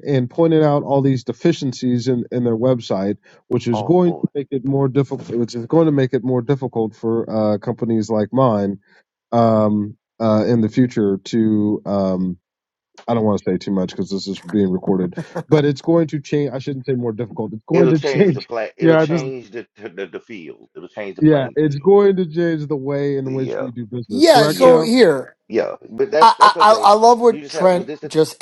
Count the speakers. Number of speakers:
3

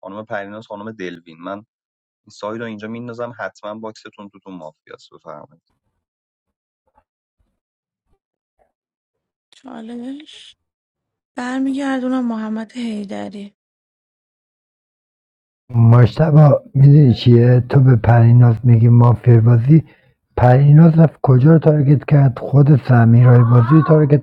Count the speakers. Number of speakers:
3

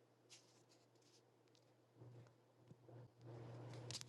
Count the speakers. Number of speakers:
0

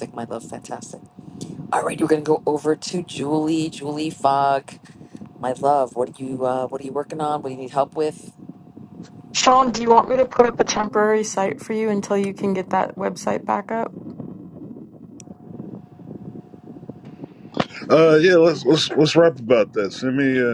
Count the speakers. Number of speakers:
3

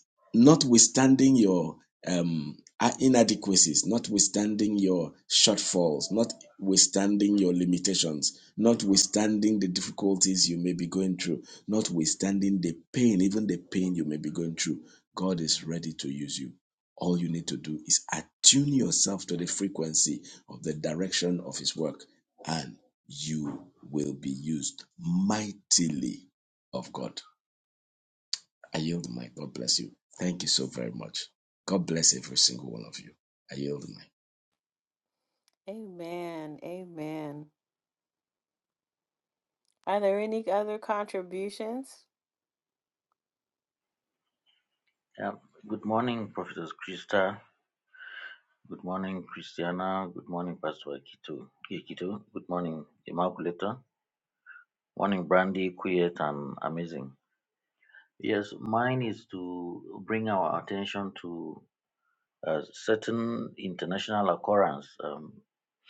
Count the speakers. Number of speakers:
3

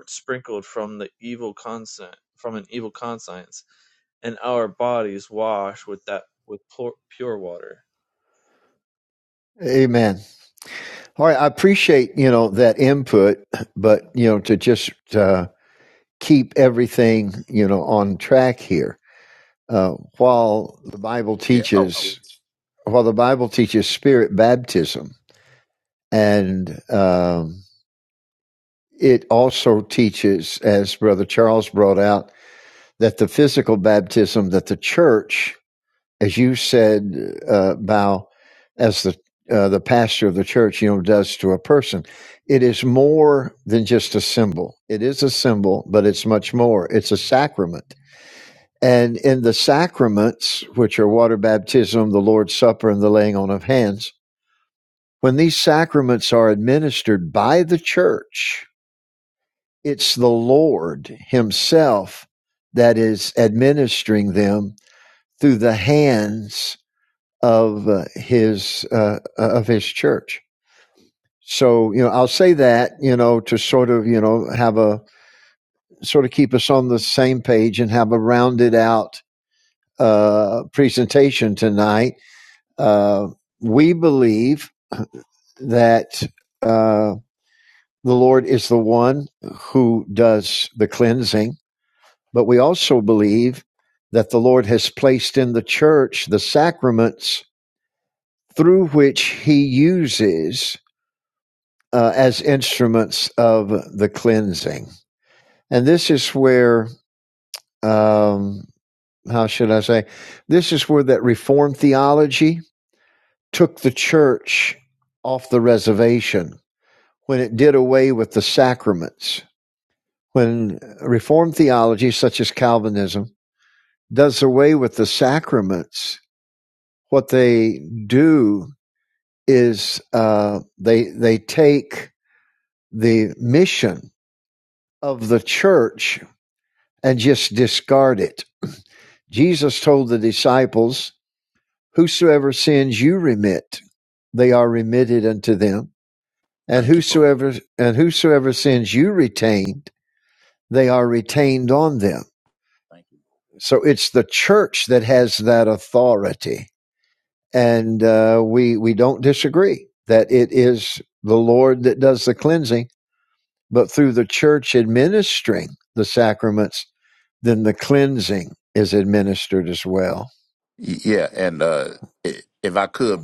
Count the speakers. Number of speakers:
3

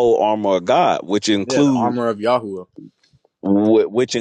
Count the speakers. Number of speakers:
2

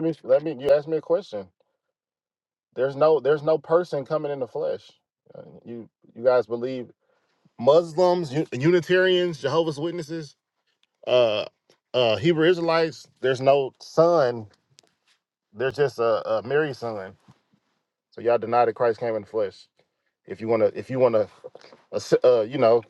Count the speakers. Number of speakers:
1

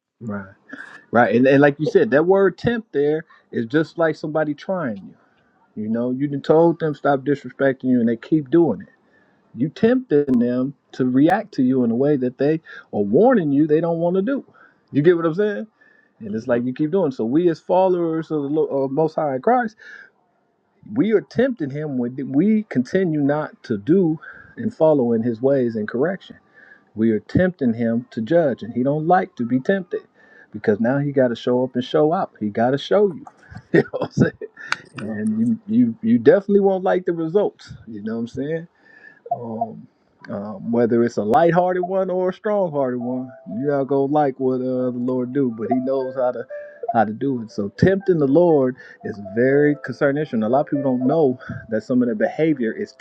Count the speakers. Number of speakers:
1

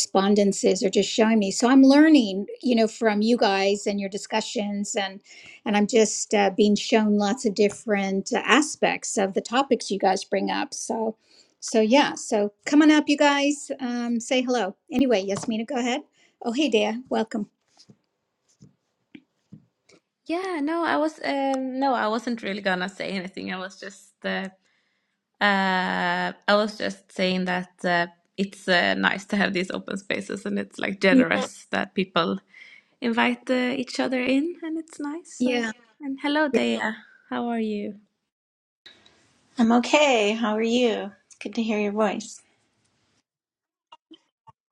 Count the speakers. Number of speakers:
3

